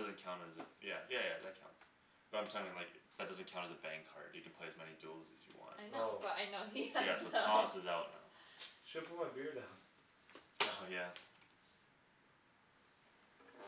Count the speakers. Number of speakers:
3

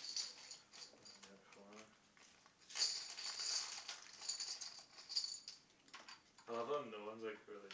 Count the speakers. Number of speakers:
1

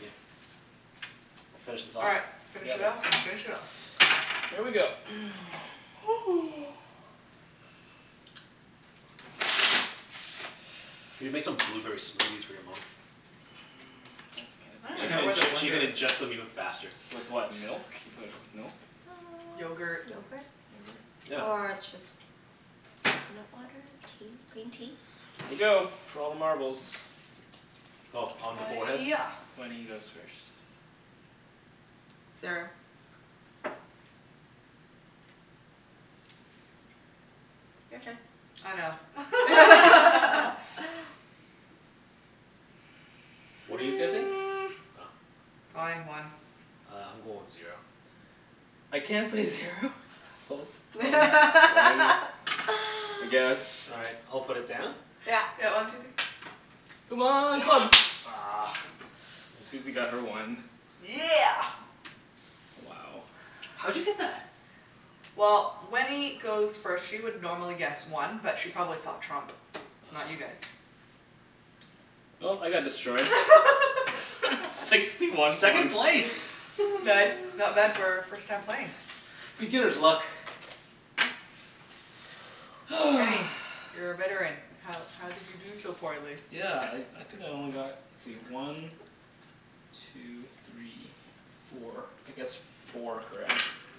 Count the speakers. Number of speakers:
4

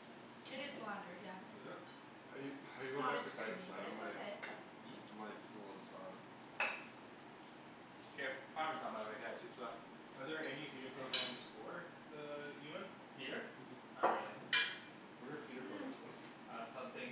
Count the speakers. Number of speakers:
4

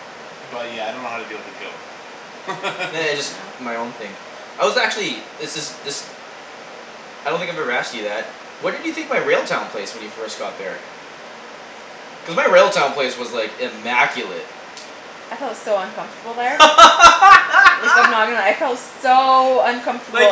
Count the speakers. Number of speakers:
3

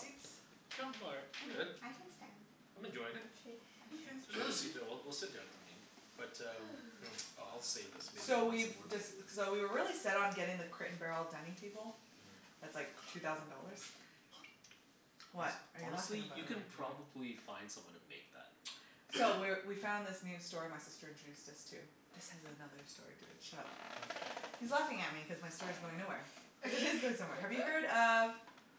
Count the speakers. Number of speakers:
4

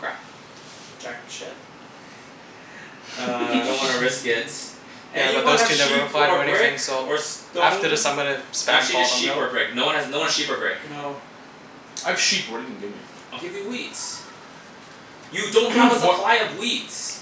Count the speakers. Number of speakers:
4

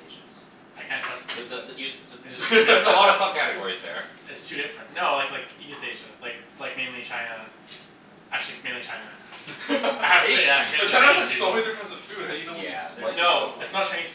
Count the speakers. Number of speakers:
3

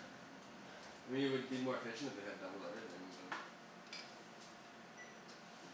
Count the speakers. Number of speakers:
1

